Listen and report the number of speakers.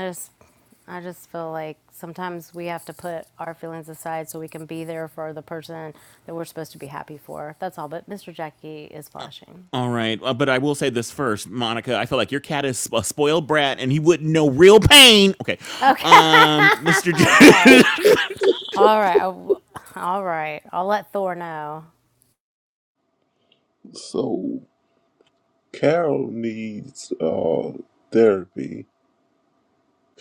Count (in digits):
3